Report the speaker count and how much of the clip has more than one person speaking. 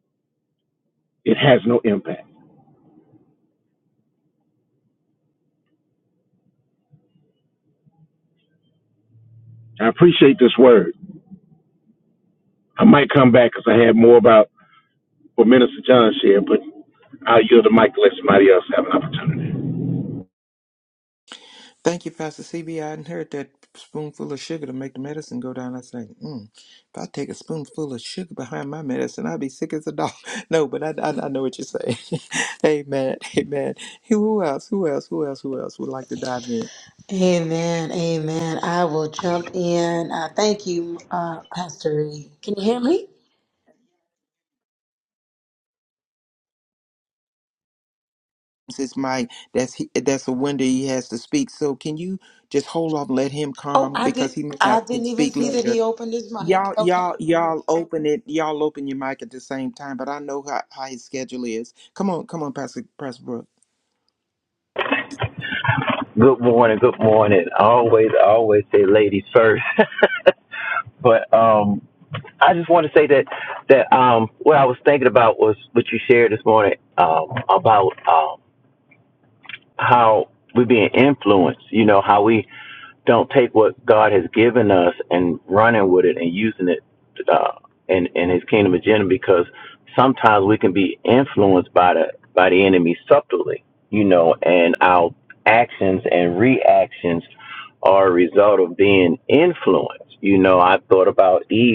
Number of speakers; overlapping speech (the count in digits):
4, about 3%